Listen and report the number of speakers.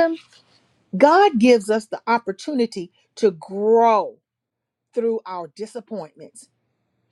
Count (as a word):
one